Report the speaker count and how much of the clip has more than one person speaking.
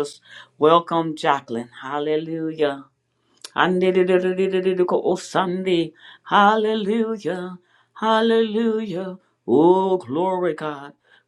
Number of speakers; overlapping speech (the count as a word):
one, no overlap